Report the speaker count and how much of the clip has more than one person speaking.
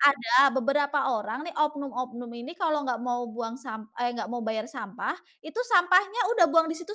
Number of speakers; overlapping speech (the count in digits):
1, no overlap